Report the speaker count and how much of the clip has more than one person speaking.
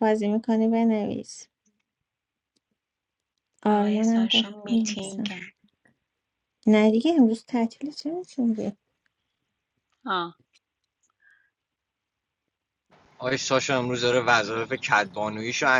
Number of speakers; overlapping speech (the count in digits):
3, about 10%